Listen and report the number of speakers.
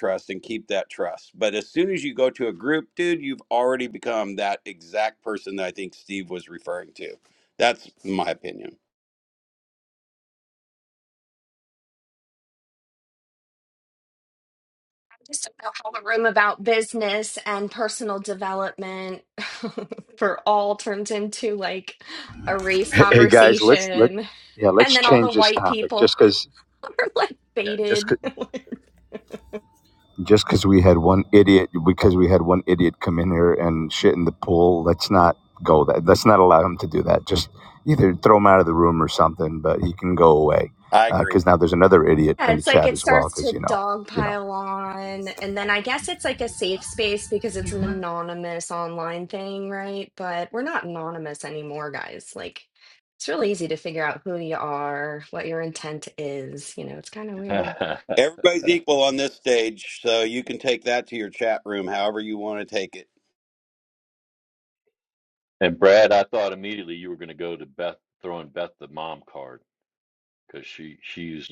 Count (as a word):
four